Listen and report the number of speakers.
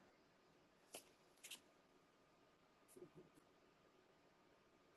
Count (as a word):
zero